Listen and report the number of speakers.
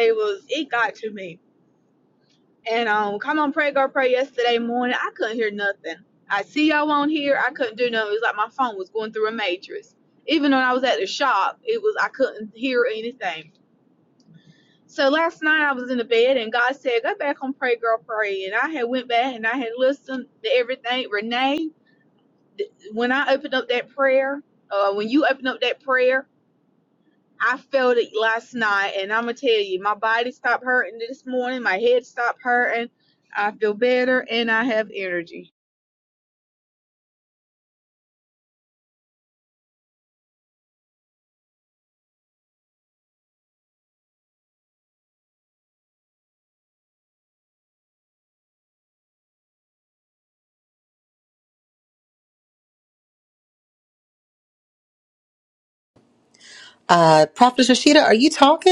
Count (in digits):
2